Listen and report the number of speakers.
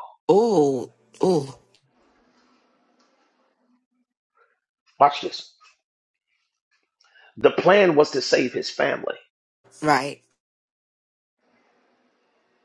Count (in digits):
2